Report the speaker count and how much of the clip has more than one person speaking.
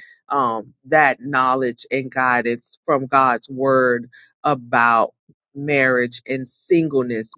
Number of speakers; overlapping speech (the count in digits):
1, no overlap